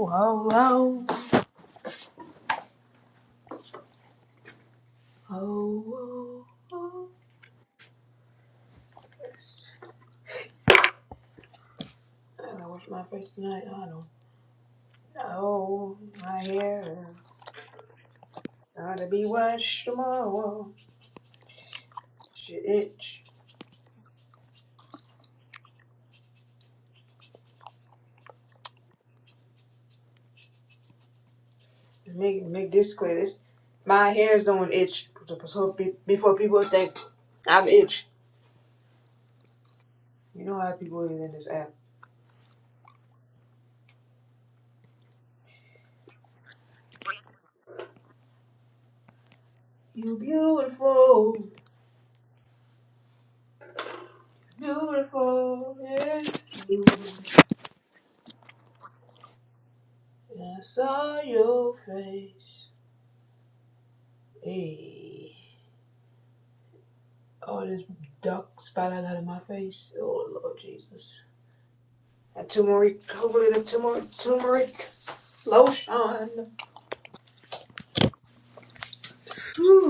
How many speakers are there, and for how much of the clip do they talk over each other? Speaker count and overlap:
one, no overlap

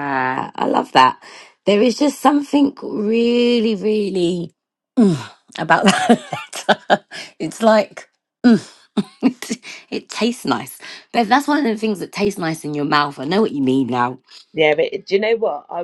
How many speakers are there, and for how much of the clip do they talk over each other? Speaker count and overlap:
two, no overlap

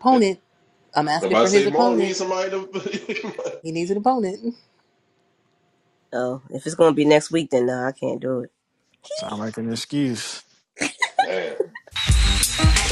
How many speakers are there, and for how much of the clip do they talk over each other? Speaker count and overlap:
four, about 7%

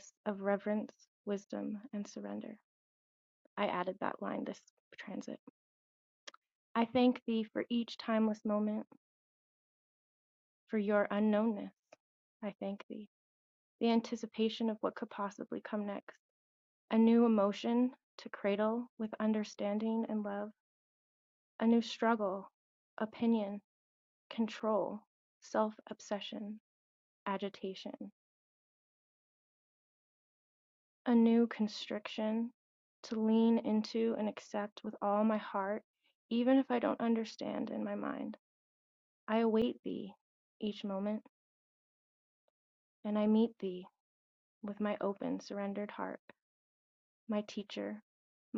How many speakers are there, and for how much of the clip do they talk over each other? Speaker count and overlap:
one, no overlap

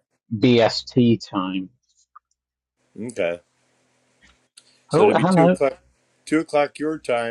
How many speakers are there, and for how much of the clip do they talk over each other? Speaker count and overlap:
two, about 9%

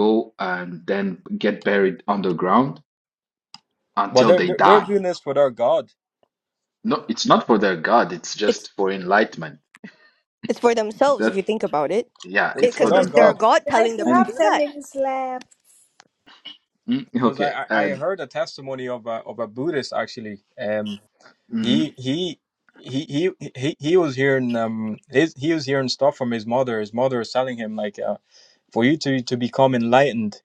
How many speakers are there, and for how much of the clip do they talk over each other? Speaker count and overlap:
four, about 13%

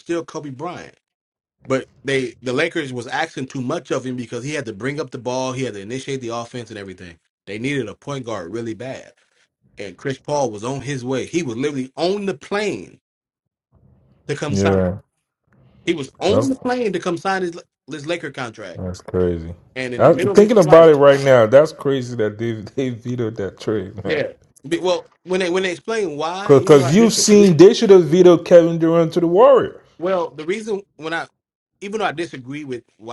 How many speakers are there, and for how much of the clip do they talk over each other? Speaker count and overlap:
two, about 8%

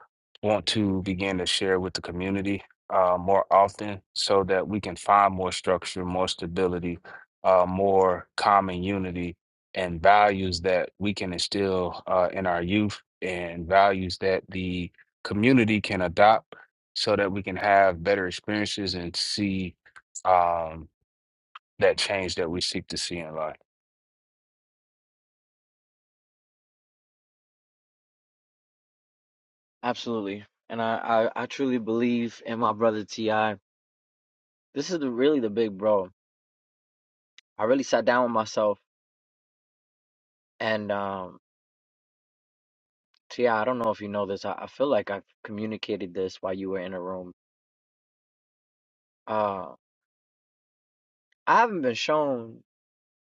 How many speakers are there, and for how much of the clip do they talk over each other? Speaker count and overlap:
two, no overlap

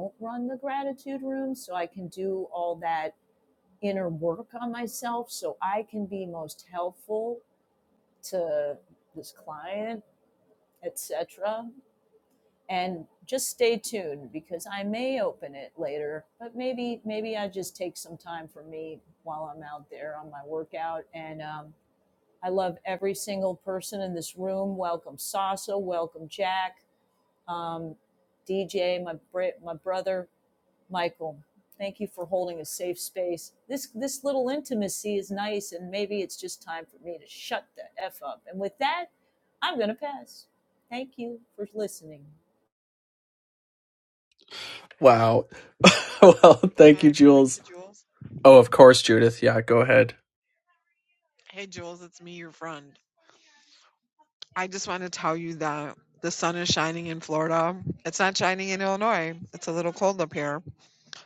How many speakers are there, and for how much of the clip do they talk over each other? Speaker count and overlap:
three, about 1%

